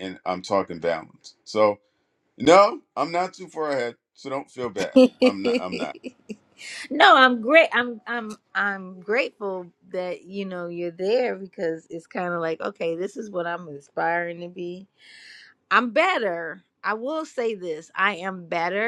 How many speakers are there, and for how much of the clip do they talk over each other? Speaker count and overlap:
2, no overlap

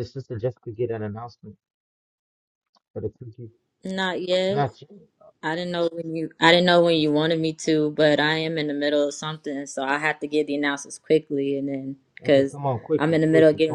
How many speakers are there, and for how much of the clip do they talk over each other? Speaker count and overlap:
2, about 9%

